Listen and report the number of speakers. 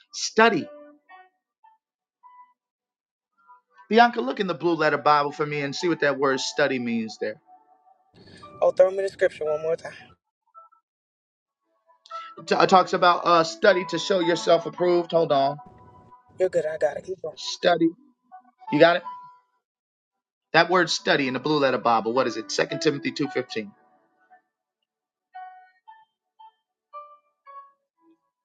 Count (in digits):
2